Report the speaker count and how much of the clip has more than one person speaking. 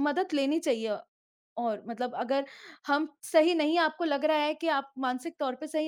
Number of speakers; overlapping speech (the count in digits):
1, no overlap